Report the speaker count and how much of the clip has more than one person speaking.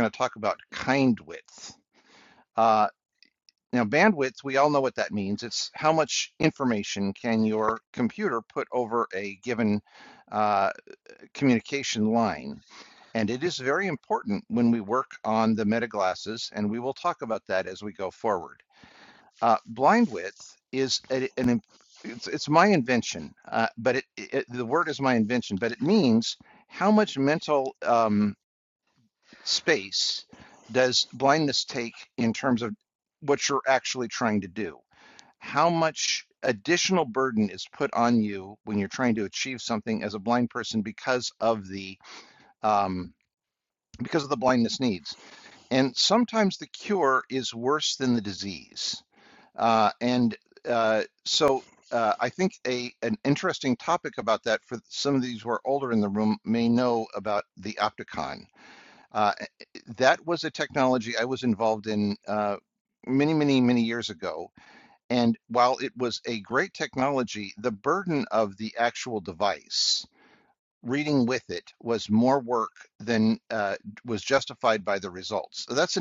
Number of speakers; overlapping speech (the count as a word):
one, no overlap